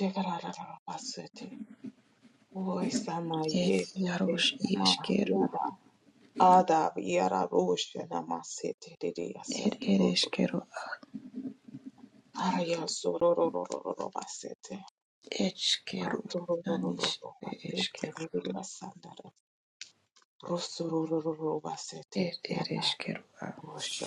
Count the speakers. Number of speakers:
two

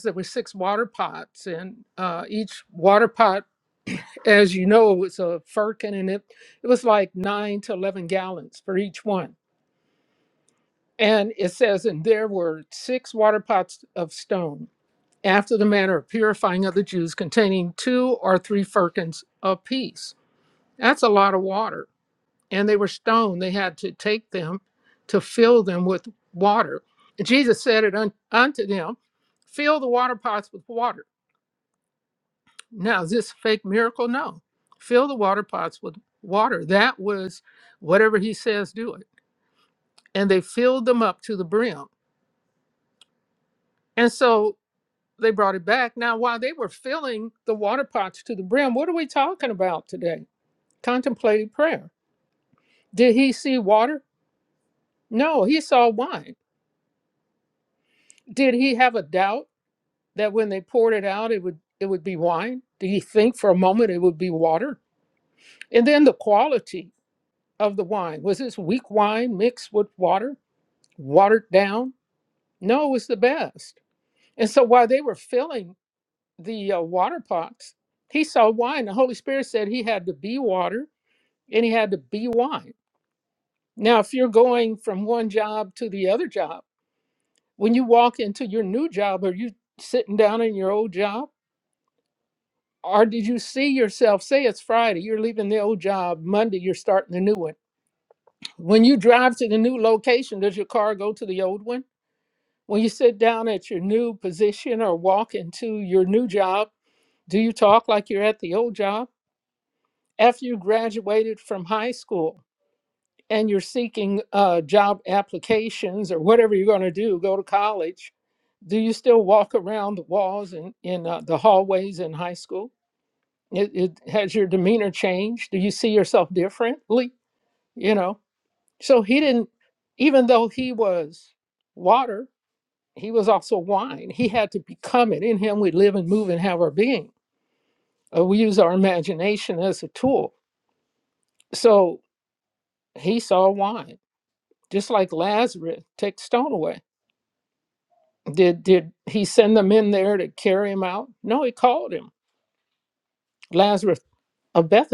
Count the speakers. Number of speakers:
one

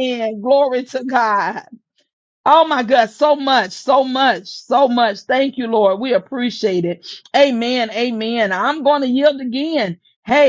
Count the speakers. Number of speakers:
one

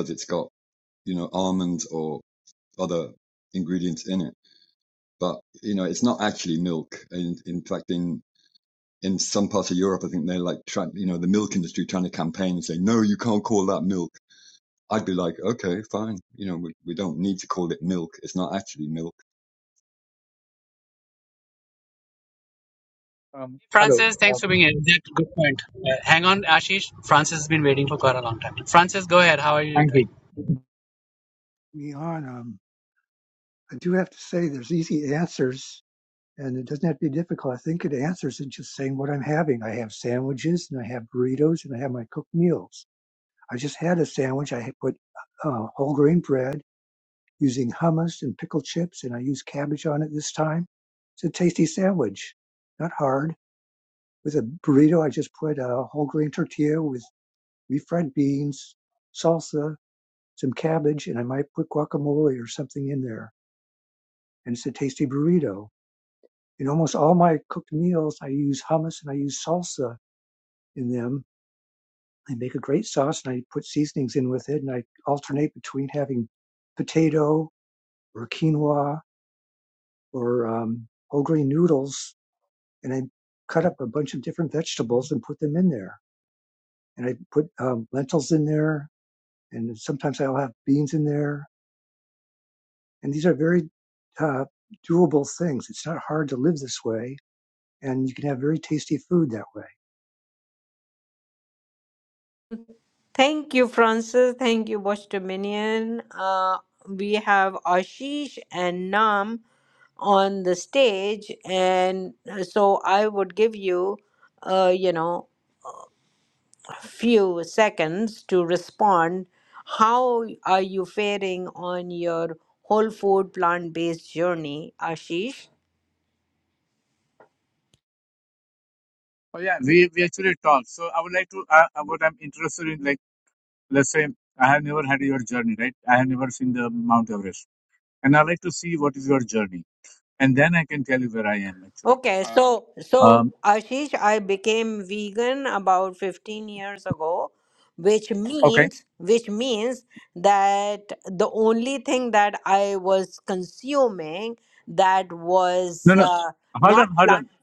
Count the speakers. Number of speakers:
five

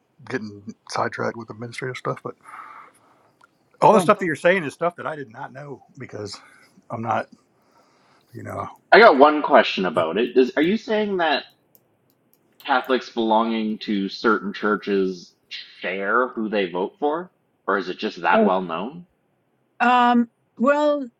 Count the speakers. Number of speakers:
three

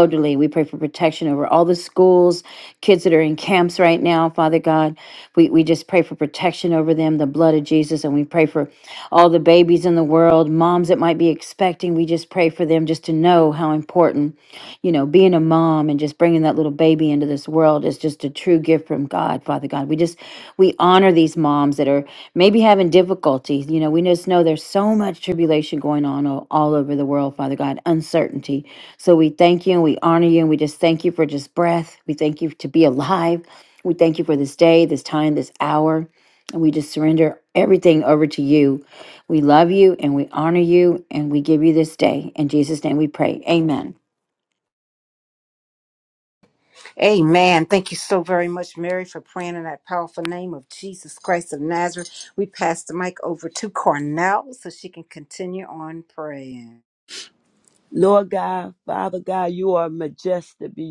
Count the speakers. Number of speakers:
three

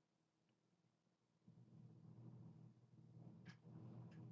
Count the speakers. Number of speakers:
zero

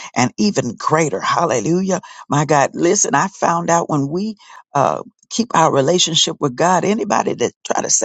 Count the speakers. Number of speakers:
one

